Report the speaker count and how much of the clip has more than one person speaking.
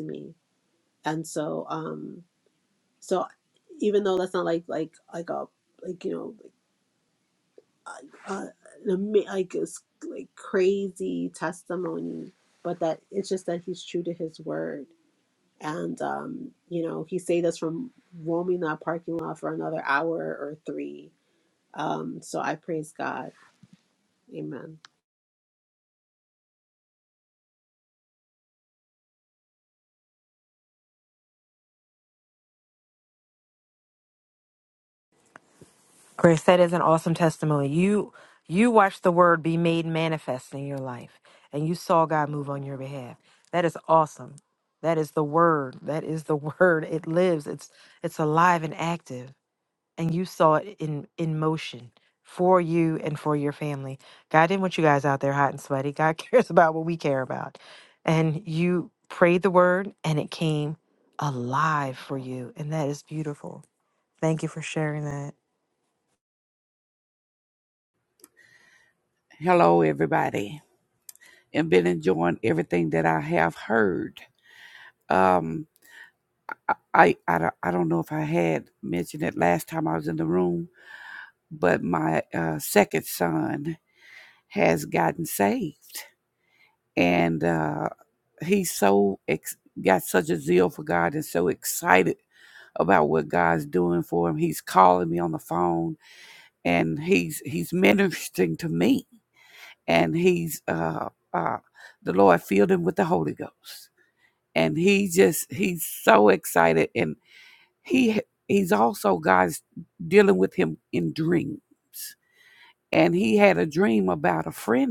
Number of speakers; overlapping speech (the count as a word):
three, no overlap